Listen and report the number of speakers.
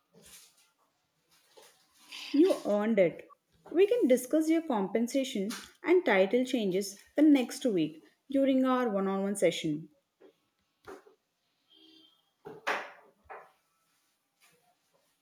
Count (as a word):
one